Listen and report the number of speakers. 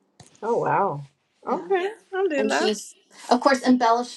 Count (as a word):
two